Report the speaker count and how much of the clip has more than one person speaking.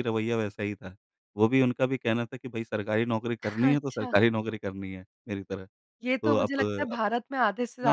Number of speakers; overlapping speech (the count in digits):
2, about 18%